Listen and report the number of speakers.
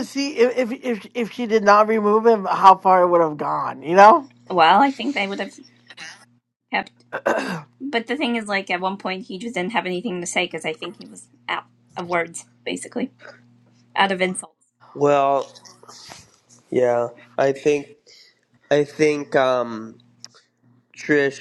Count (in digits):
3